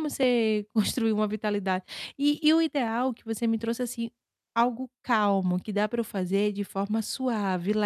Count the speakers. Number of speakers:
1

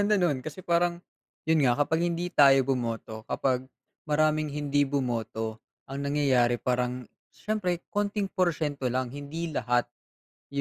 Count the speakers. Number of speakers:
1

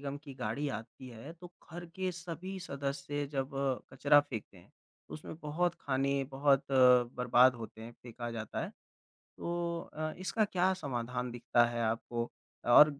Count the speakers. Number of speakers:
1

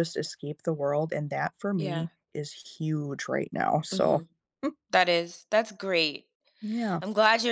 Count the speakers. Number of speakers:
2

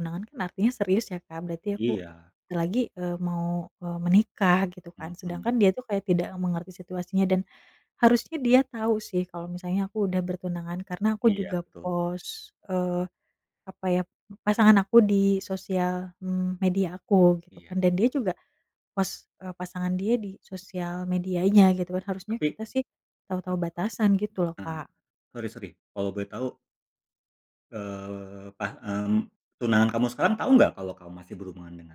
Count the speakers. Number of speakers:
2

